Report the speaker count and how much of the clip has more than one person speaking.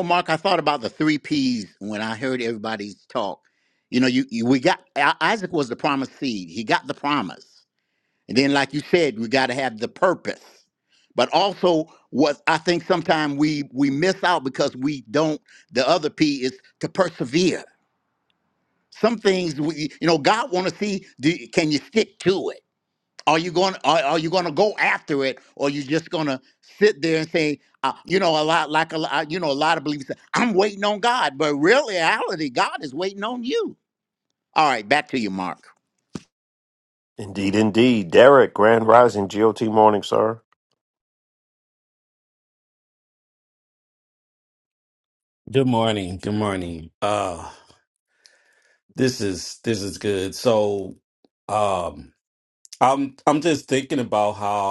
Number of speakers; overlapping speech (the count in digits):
3, no overlap